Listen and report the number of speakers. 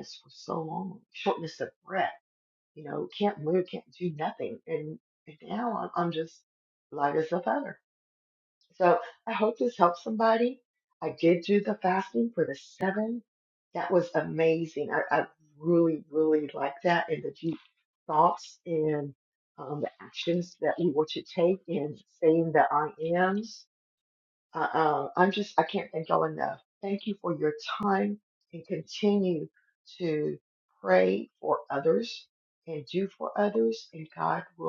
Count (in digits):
1